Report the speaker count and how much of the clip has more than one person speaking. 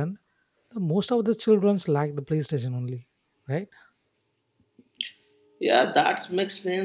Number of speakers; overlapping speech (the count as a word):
two, no overlap